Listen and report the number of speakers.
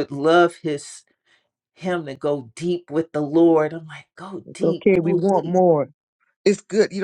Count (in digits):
2